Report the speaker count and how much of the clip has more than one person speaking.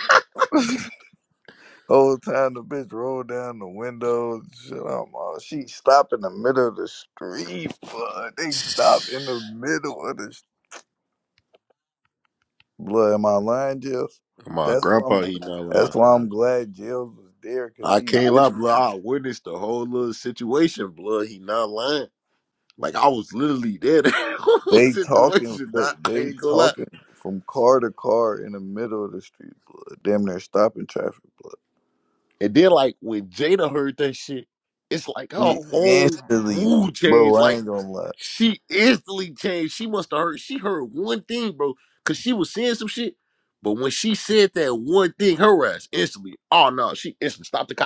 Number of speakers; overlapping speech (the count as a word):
two, about 11%